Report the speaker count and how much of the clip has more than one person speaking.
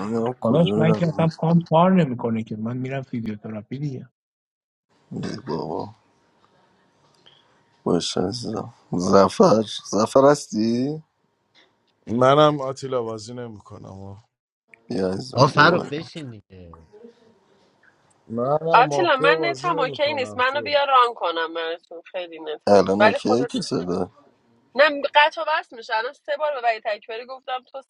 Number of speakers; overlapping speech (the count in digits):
5, about 14%